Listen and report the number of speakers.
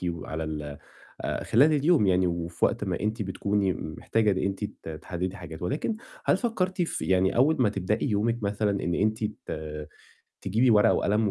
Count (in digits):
1